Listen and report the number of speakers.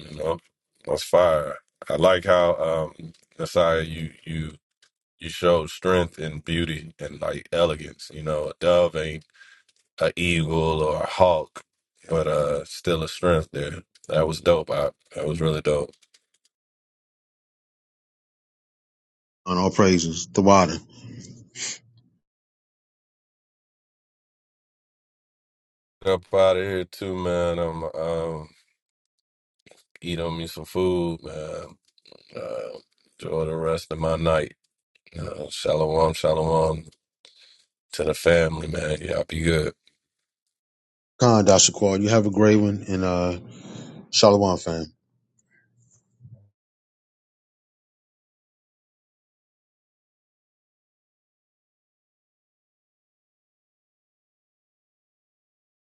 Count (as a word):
two